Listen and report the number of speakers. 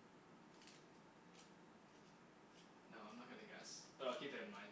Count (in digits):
1